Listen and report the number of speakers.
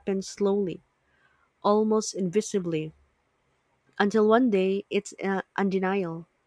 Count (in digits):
1